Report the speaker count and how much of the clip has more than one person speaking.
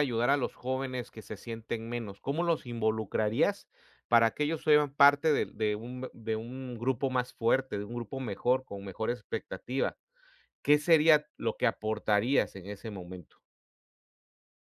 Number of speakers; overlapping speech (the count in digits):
1, no overlap